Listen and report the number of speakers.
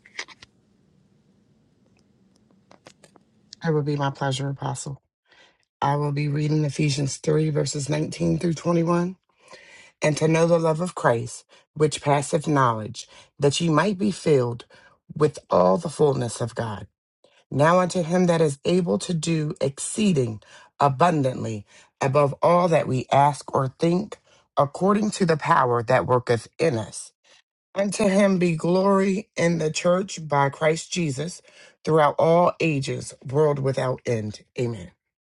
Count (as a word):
one